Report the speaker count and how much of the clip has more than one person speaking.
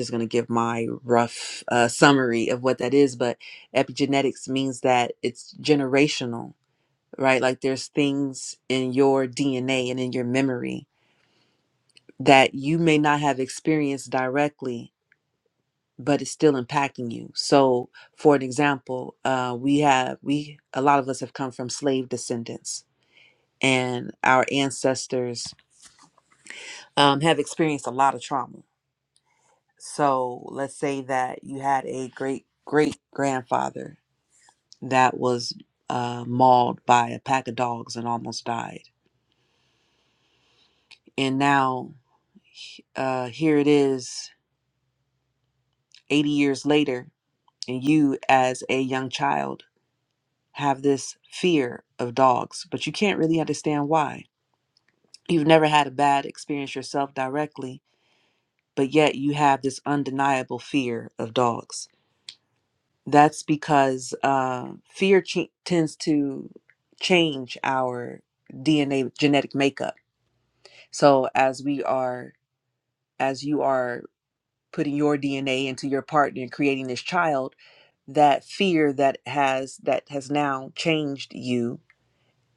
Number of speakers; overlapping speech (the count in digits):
1, no overlap